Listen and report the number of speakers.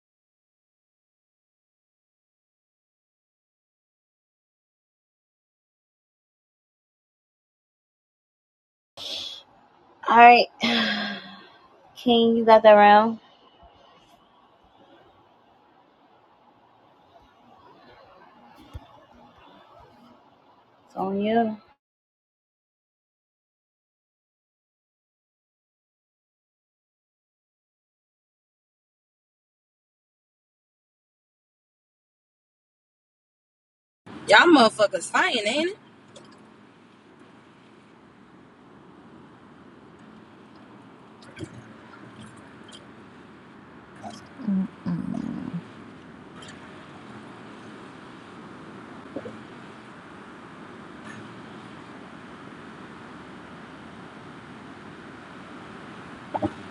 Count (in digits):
2